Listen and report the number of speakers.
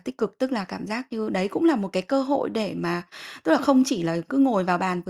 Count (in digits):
1